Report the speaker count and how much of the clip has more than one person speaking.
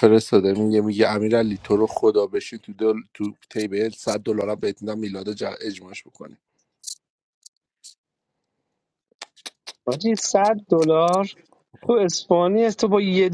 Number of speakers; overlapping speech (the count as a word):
two, no overlap